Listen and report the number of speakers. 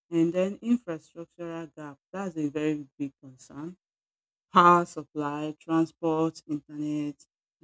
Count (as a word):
one